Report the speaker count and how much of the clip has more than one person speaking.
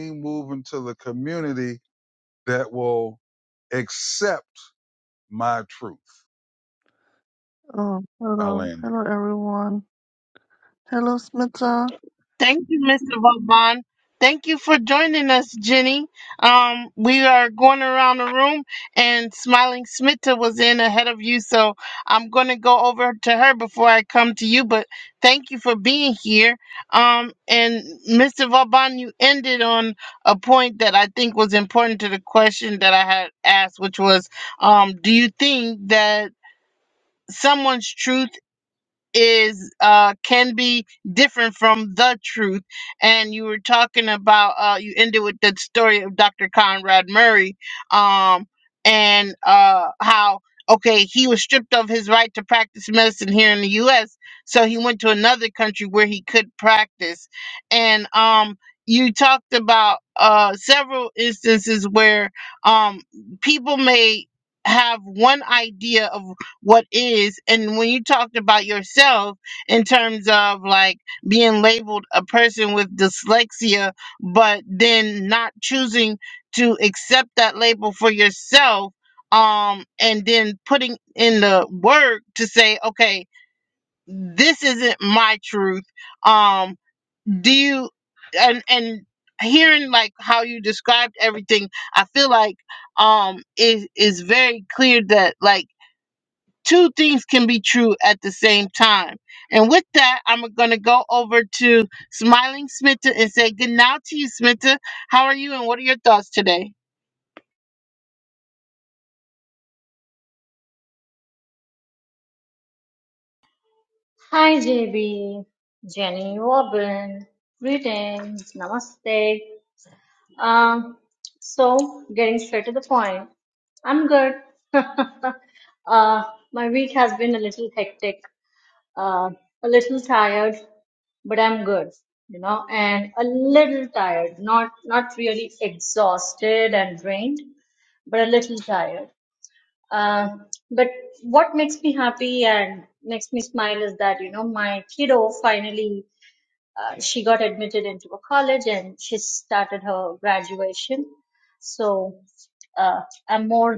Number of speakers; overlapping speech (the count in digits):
4, under 1%